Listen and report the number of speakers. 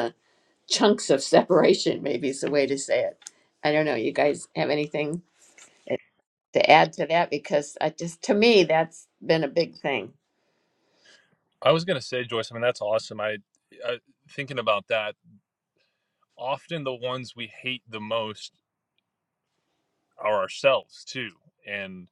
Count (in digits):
2